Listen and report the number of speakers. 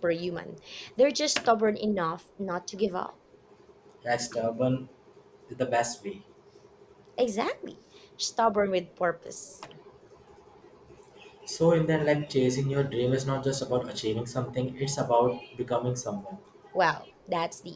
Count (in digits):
2